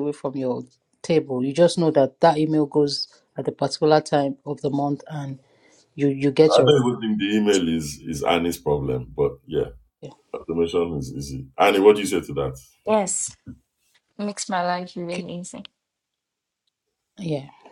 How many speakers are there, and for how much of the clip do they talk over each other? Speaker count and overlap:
3, about 2%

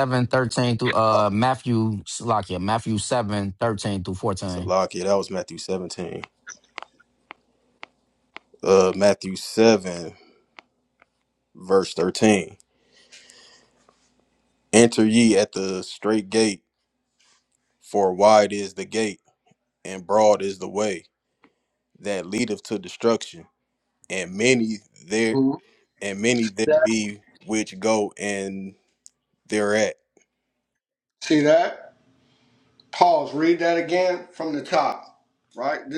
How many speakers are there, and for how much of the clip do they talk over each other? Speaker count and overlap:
3, about 1%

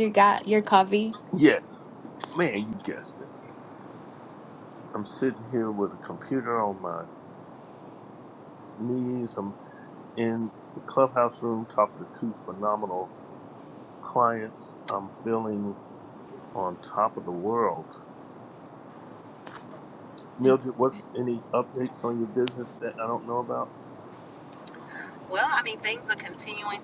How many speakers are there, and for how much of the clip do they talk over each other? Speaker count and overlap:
3, under 1%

